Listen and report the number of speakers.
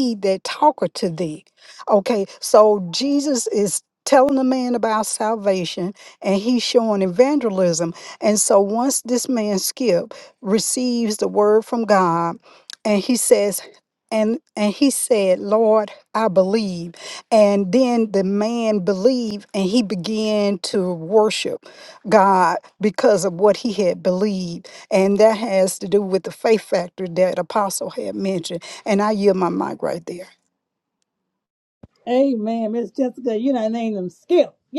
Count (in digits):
2